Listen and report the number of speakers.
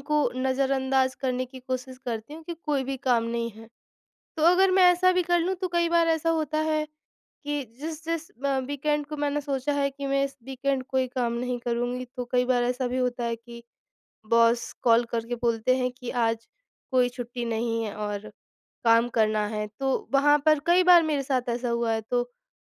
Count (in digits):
1